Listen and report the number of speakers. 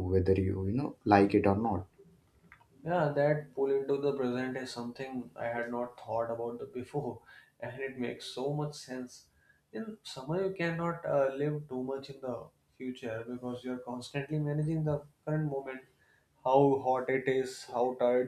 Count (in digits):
2